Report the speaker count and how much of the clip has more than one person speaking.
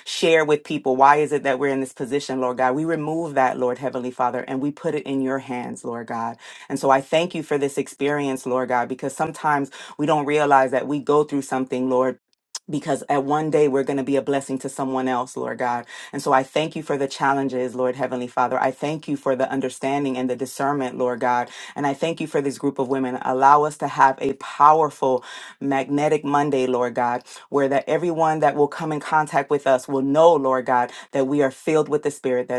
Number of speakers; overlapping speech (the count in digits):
1, no overlap